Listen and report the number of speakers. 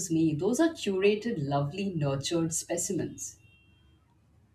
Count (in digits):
1